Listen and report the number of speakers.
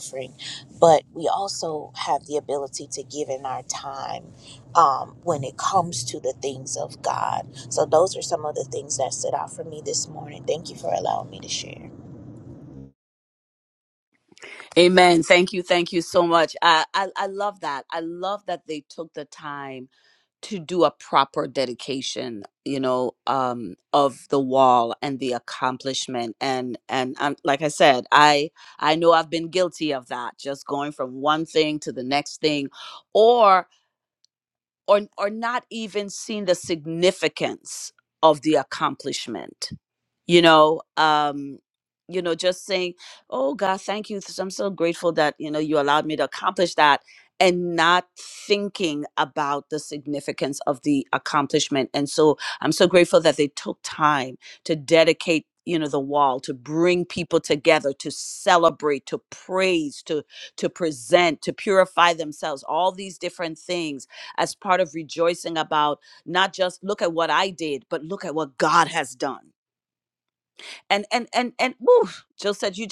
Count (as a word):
two